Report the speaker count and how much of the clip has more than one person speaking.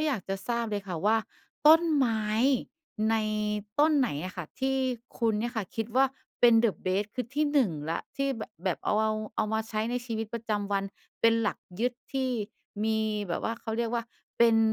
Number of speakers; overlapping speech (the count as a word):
one, no overlap